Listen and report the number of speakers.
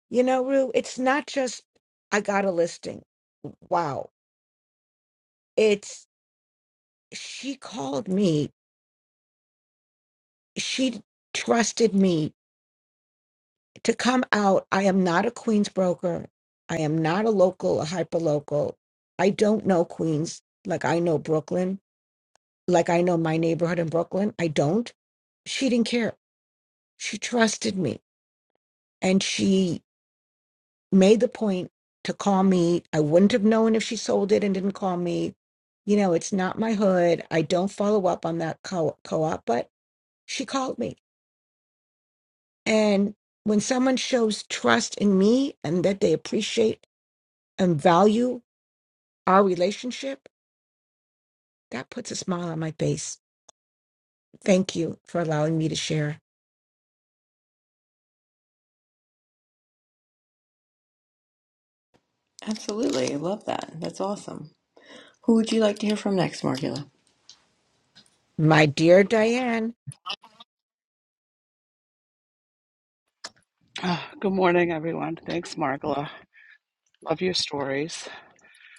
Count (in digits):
3